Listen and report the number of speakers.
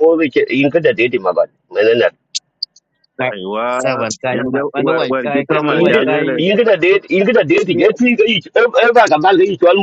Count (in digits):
3